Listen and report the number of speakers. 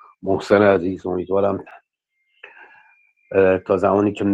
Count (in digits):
1